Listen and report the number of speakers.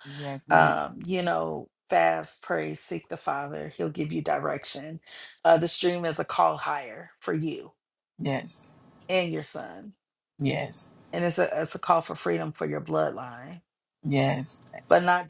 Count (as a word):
two